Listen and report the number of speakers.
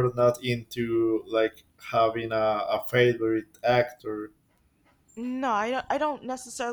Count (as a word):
two